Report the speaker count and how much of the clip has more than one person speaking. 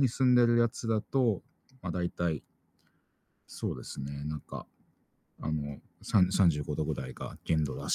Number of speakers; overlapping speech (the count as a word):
one, no overlap